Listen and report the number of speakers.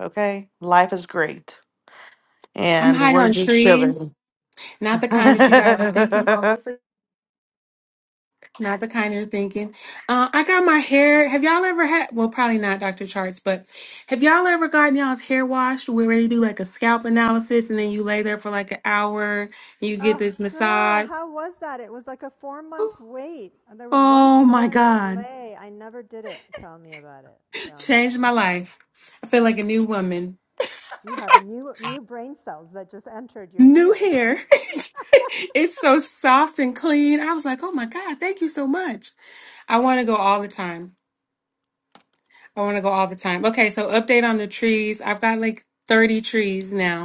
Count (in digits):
3